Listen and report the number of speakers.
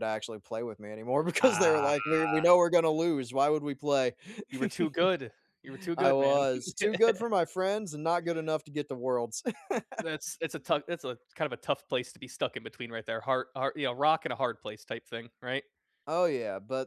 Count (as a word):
two